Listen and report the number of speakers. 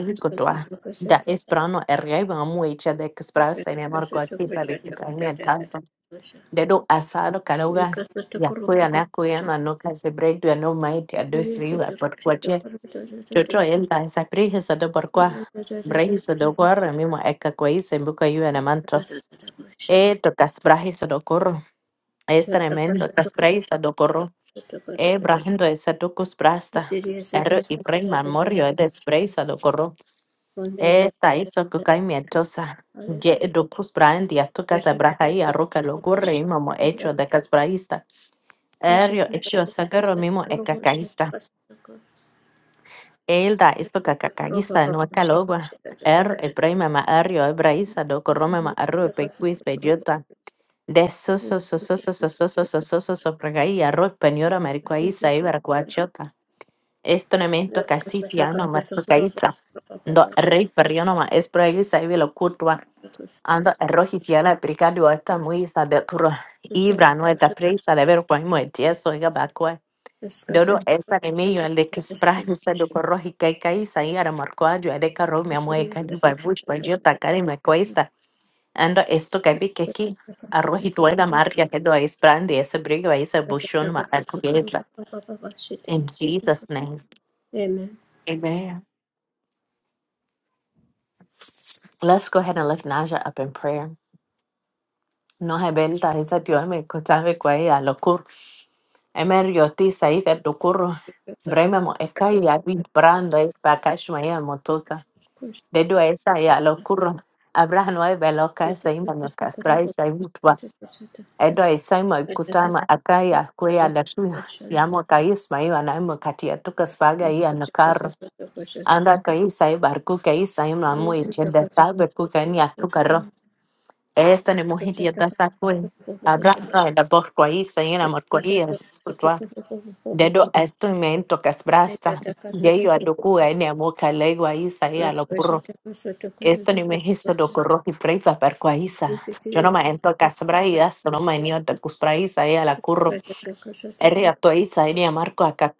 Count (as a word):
two